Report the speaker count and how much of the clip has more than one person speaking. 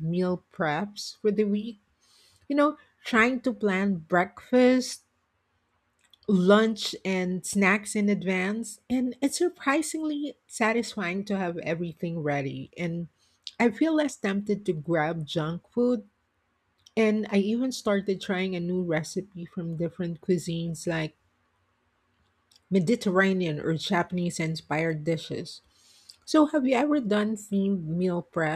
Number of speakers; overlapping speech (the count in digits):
1, no overlap